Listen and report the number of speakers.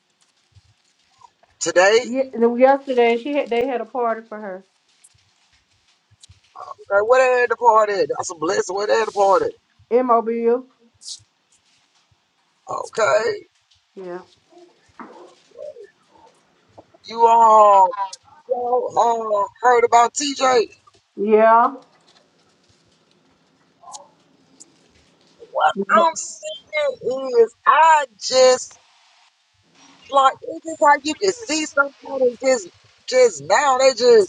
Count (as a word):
two